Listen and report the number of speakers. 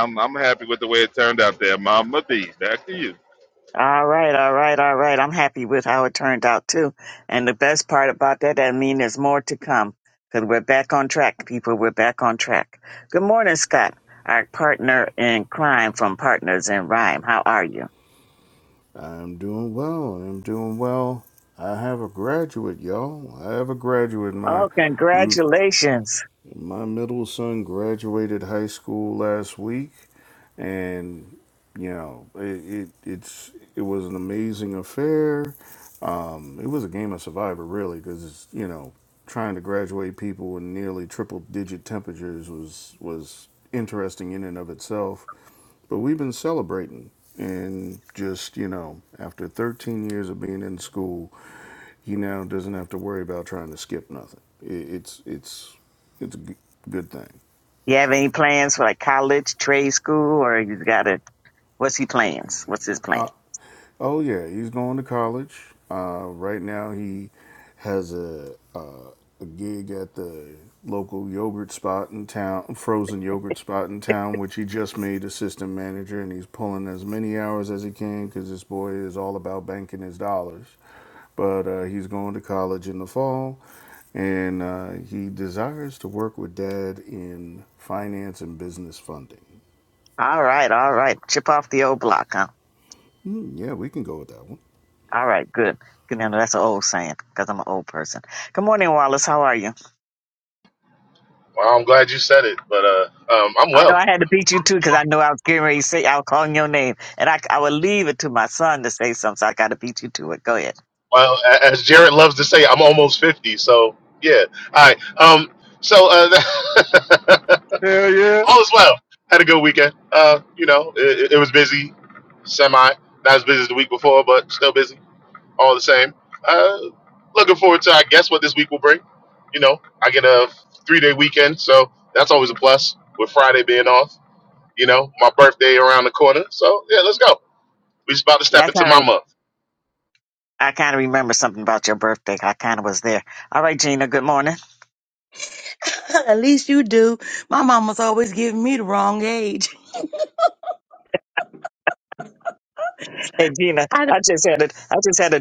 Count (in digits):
5